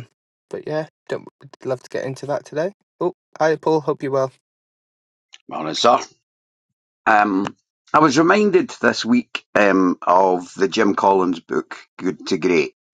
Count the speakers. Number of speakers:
2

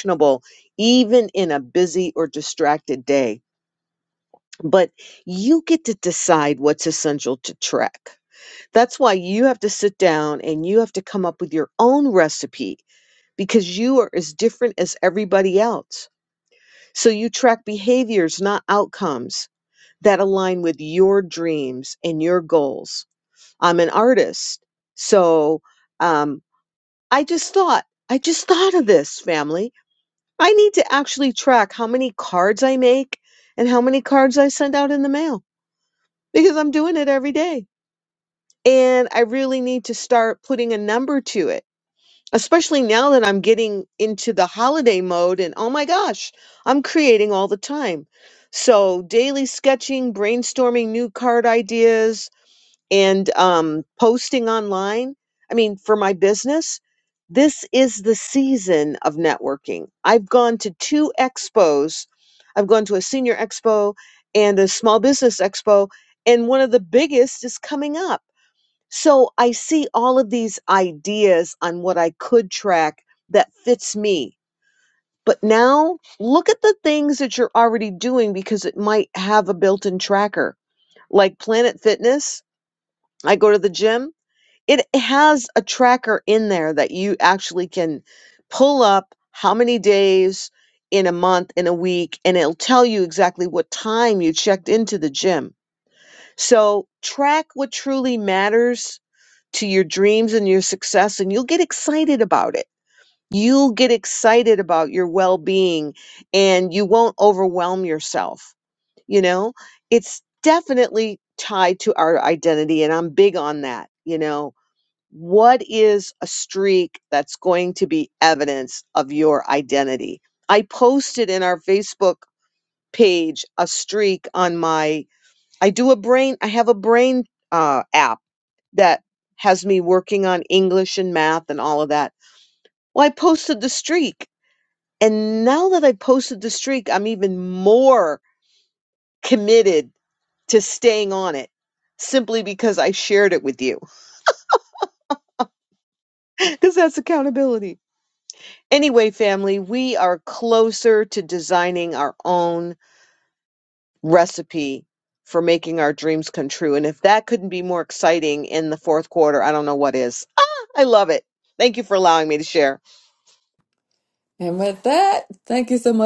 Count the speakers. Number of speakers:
2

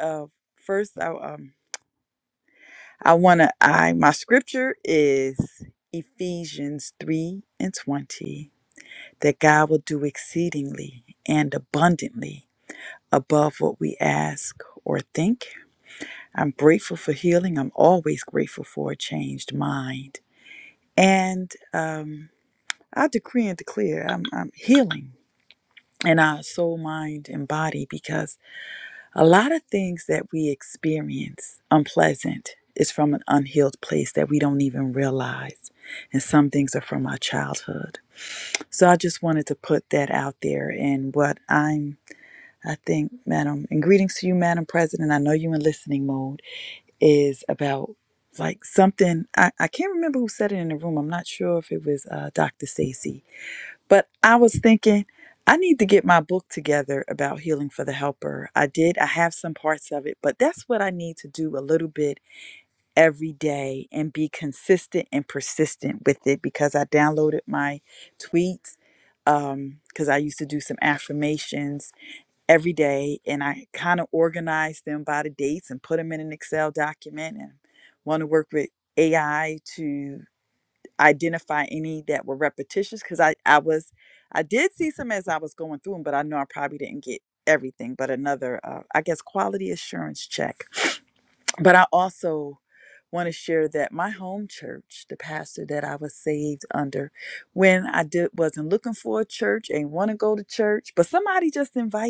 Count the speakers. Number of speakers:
1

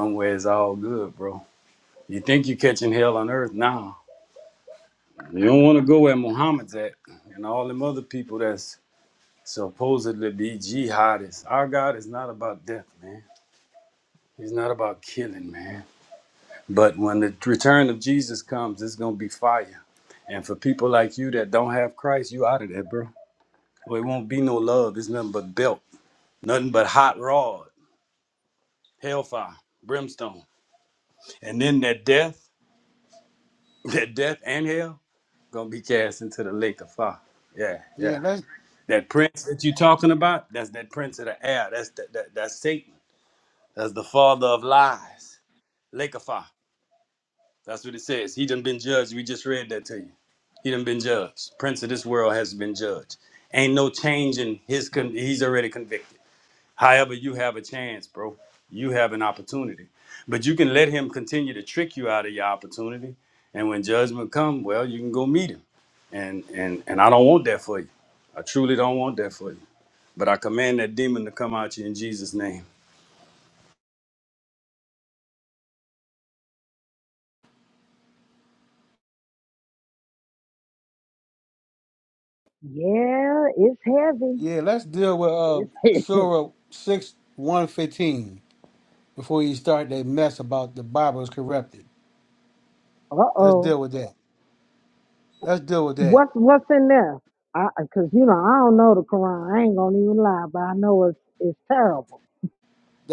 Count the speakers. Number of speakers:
3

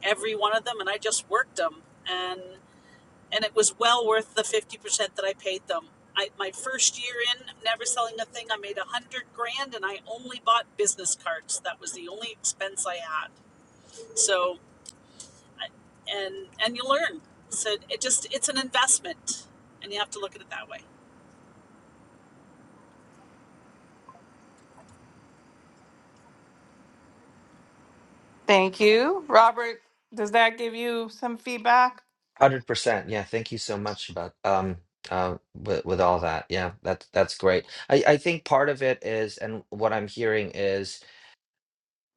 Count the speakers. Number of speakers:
3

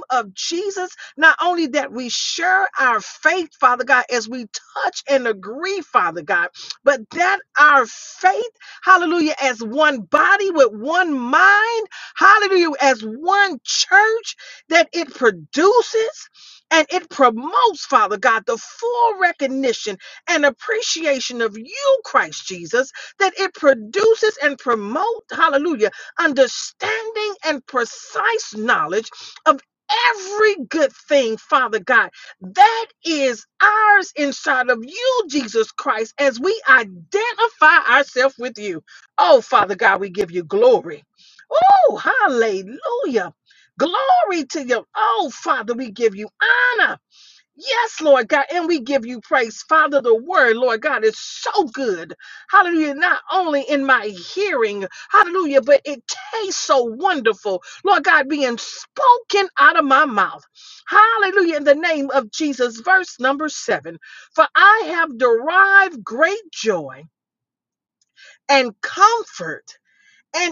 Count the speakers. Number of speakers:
1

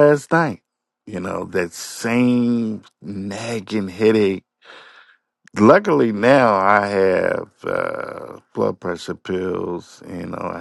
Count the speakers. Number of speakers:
1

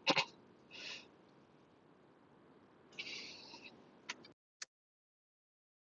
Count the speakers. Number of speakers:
0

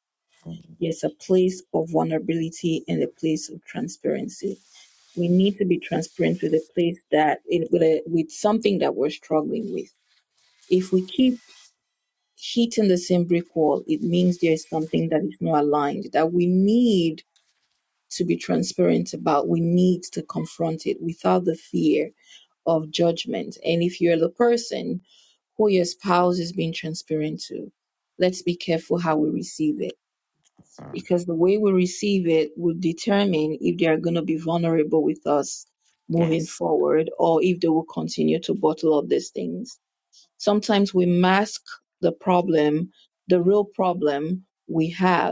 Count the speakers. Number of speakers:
1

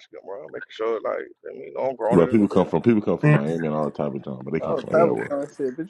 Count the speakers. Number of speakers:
3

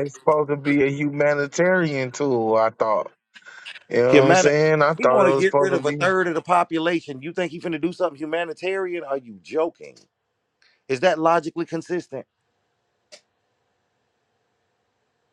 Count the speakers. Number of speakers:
2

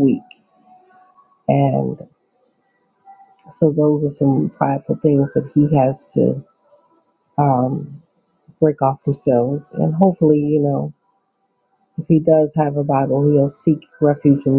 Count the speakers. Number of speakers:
1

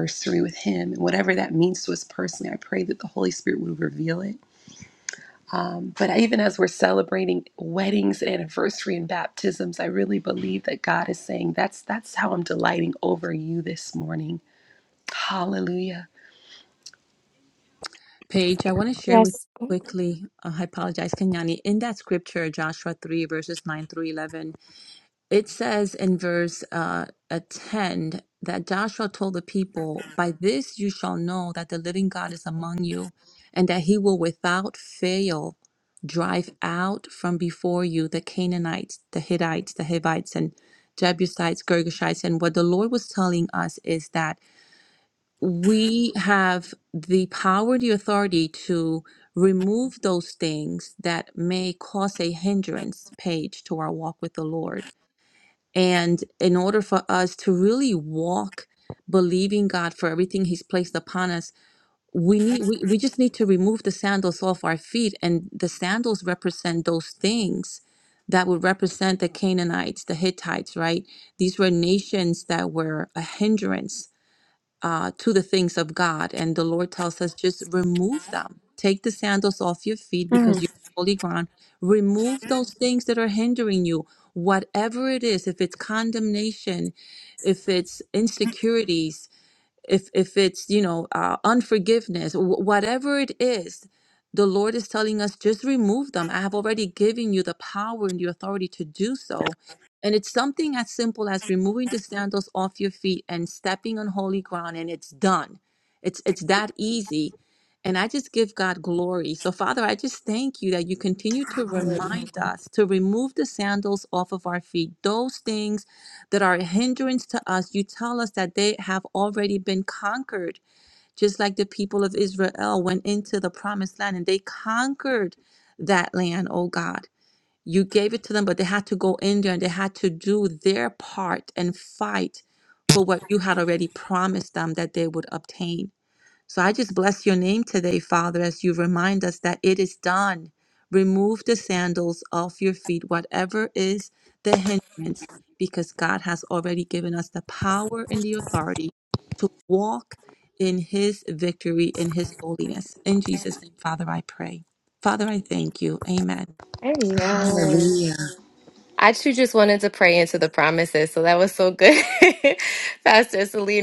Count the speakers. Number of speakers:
3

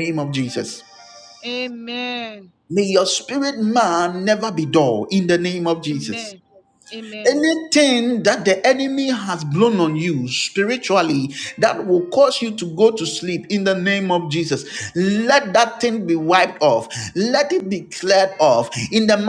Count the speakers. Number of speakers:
2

